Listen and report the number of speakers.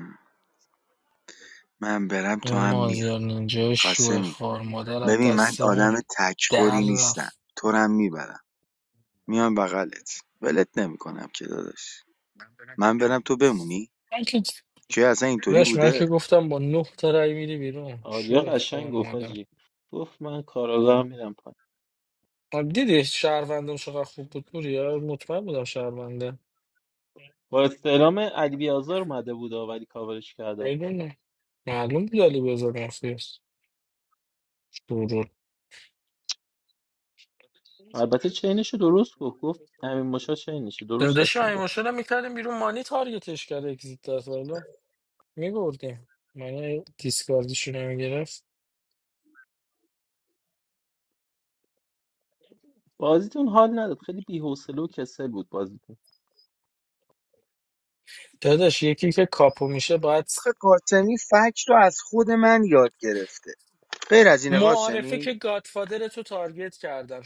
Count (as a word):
three